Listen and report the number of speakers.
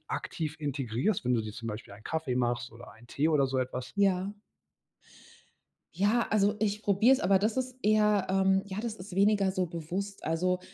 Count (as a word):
two